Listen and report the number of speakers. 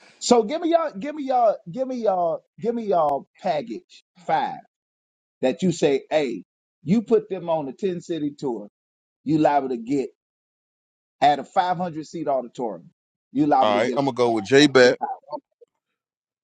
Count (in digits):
2